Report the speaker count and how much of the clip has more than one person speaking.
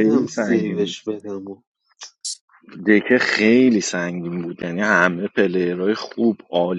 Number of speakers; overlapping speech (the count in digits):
2, about 14%